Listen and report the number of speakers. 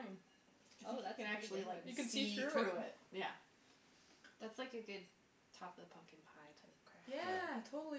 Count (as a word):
three